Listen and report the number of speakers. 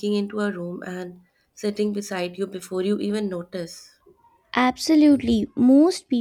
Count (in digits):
2